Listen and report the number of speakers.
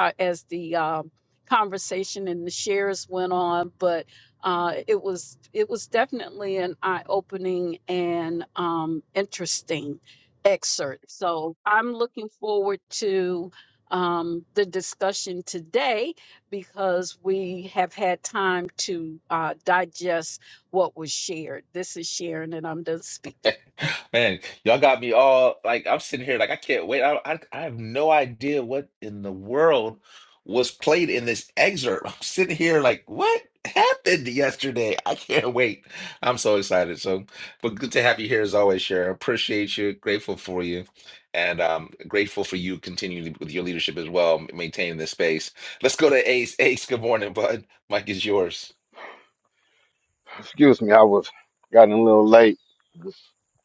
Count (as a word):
three